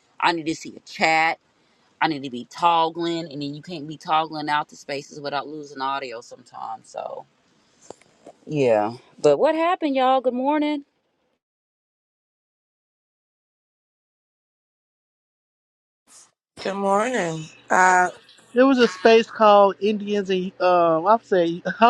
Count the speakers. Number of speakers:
three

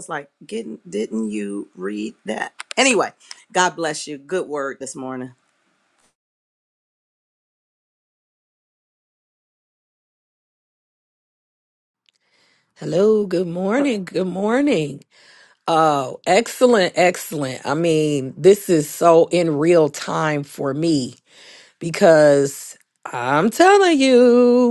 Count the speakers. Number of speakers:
two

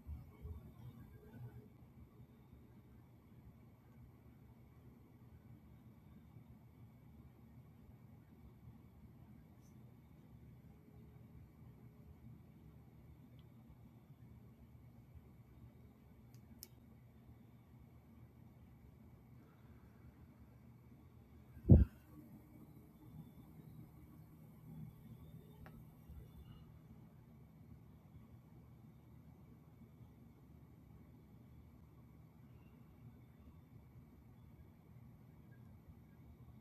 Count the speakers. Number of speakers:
zero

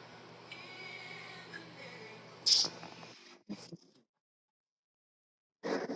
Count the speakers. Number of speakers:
zero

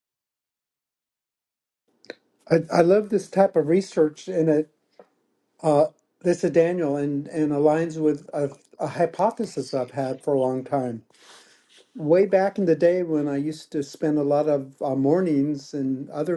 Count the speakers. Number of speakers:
one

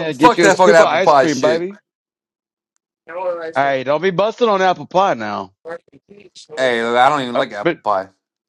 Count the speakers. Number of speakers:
three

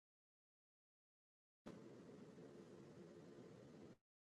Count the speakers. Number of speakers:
zero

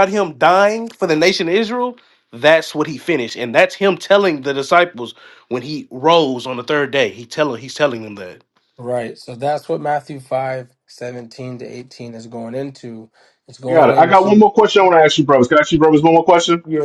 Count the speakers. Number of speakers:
three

